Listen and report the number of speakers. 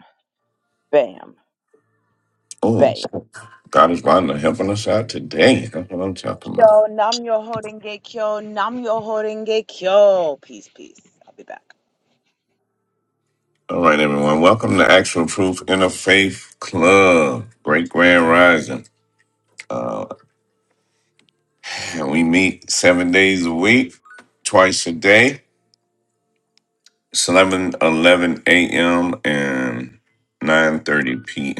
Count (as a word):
two